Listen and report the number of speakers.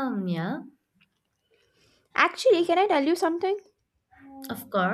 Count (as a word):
two